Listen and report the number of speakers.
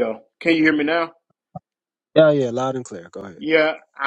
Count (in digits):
2